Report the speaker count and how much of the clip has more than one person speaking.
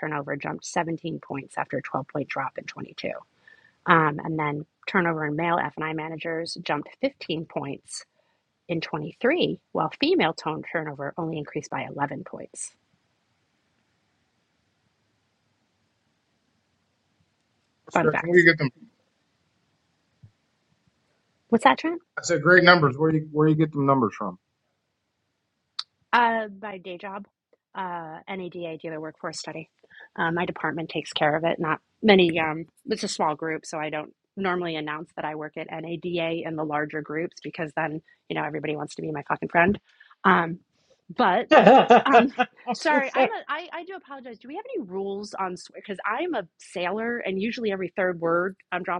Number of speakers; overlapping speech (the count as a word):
three, about 2%